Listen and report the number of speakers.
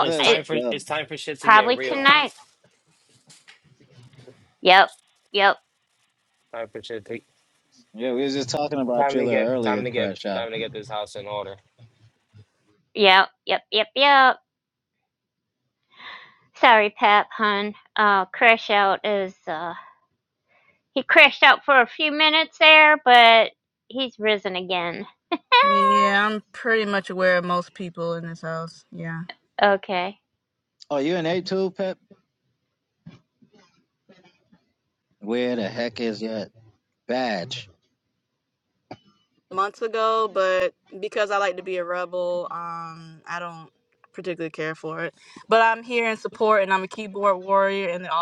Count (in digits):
4